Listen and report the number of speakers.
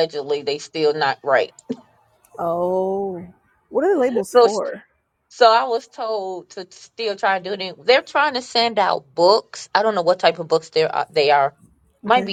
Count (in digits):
2